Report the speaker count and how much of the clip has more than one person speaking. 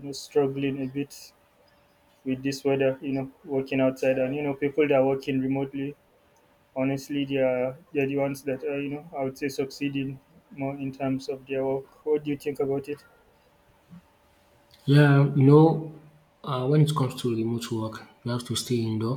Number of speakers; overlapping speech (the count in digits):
2, no overlap